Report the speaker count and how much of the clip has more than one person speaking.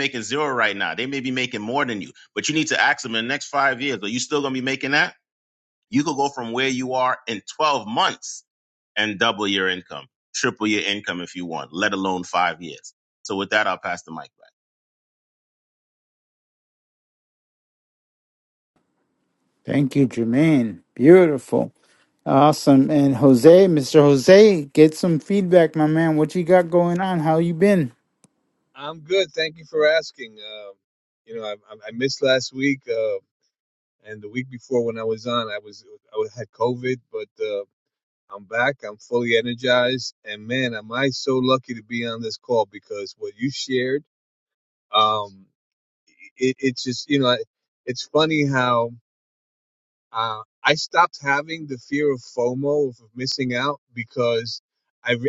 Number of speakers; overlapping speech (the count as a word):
three, no overlap